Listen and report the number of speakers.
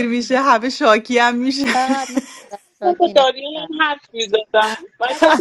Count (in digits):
3